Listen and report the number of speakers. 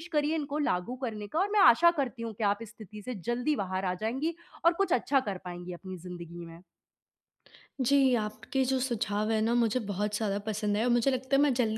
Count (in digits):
2